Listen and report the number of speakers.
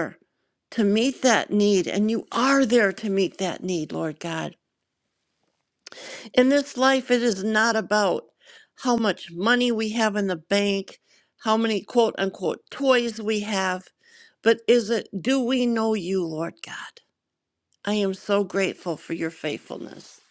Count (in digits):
1